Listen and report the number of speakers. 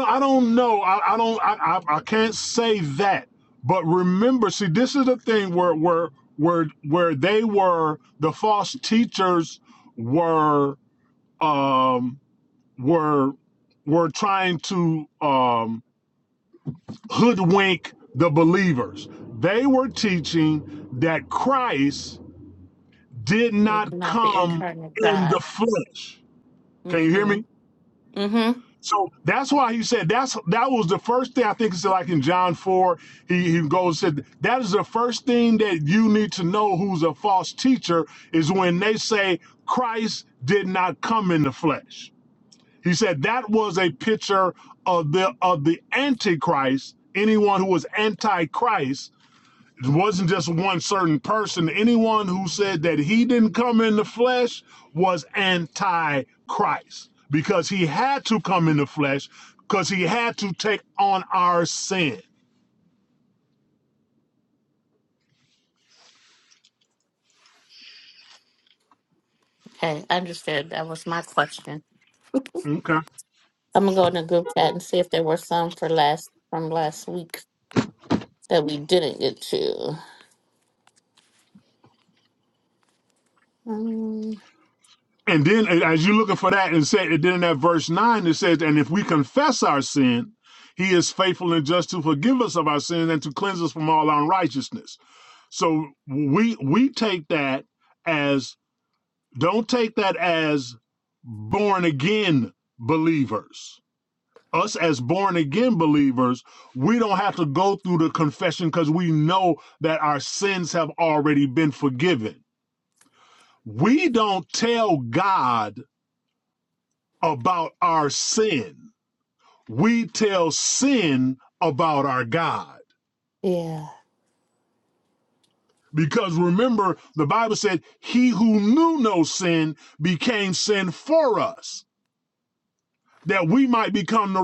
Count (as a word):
two